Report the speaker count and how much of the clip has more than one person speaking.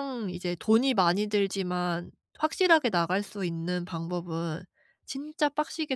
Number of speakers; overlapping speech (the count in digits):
1, no overlap